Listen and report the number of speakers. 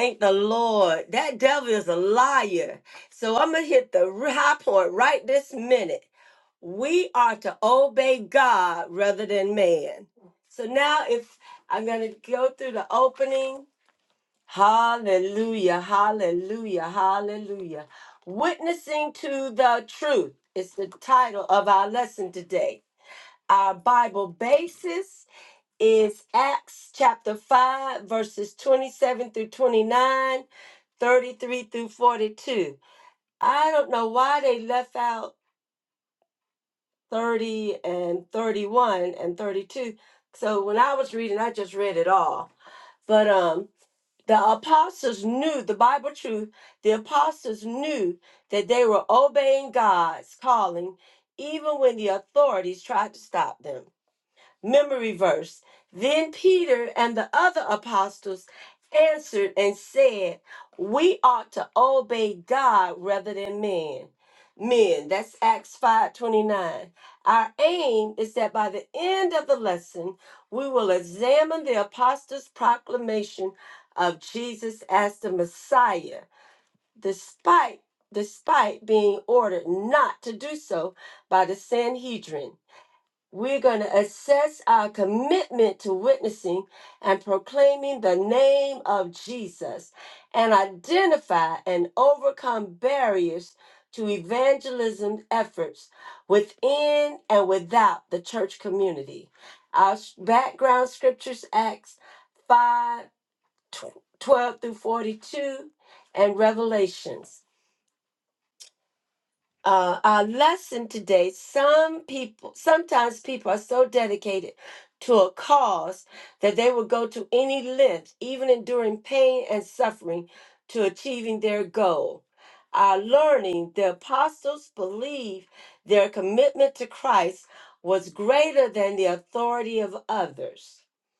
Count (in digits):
1